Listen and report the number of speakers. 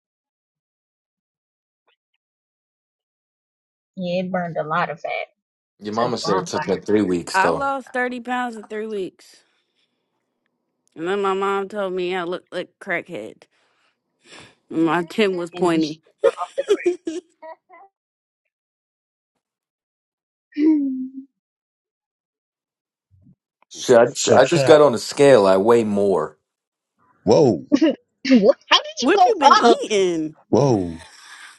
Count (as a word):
four